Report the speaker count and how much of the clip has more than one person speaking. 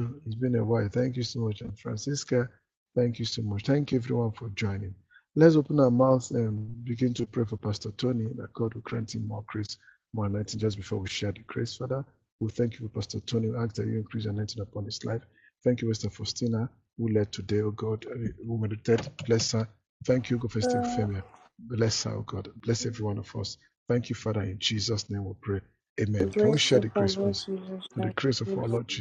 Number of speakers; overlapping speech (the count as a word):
two, about 7%